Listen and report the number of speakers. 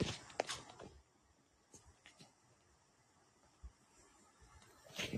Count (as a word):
zero